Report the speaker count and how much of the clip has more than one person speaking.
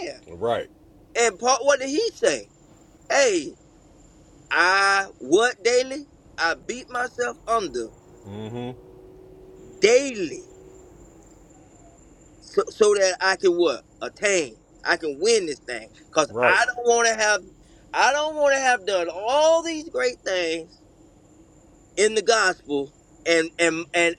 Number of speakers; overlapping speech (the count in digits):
2, about 1%